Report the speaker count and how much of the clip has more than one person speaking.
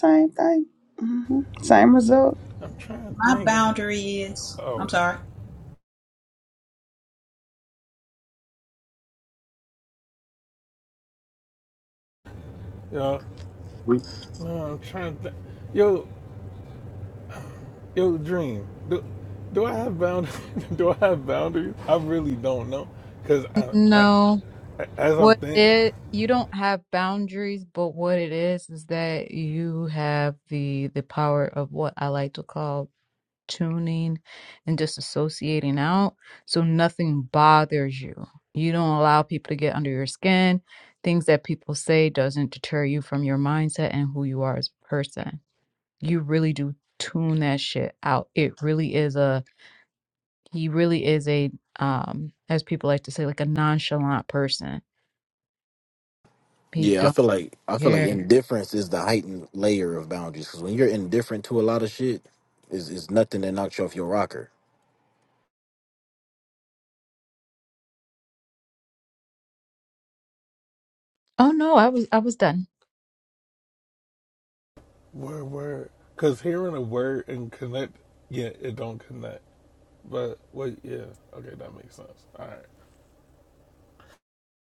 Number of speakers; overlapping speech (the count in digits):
5, about 3%